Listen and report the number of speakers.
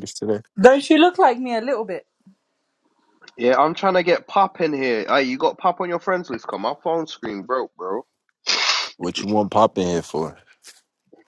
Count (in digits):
3